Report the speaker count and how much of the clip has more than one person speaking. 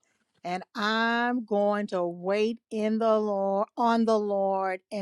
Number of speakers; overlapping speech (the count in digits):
1, no overlap